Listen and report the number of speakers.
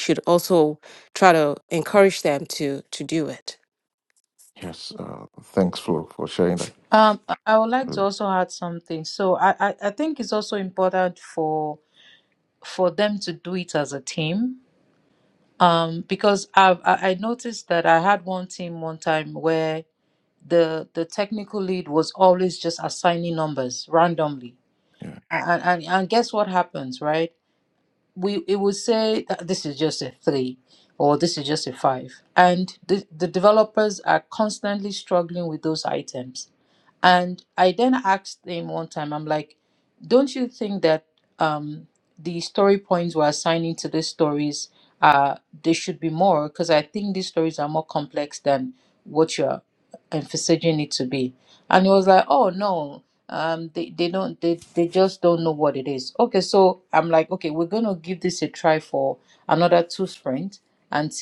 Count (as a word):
three